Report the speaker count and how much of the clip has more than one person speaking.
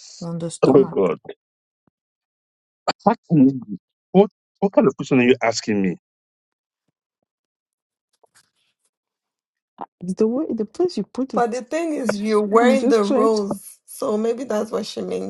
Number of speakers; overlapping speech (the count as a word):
three, about 8%